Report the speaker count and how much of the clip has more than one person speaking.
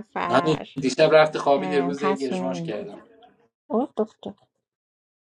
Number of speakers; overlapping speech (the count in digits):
2, about 33%